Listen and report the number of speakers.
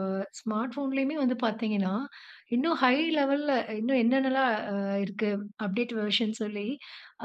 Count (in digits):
1